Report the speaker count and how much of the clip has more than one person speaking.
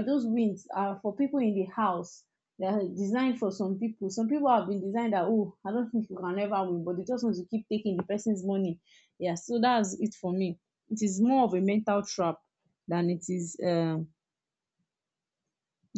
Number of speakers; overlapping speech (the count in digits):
1, no overlap